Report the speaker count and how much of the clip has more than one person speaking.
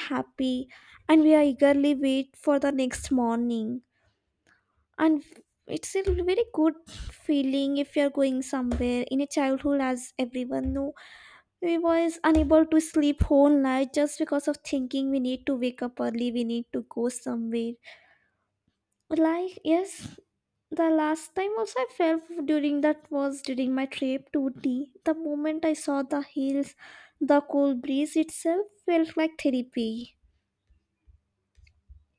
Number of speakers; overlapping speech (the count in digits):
1, no overlap